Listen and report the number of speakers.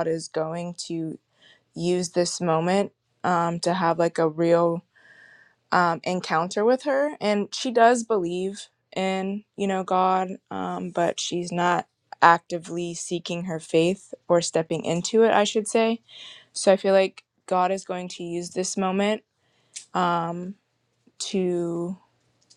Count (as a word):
one